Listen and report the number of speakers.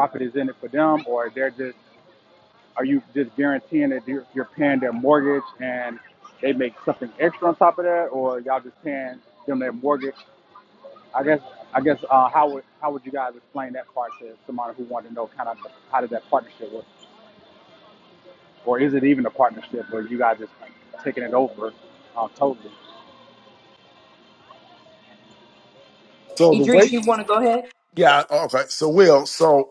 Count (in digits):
3